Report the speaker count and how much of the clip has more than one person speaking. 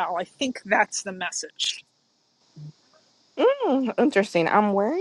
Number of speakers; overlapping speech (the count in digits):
2, no overlap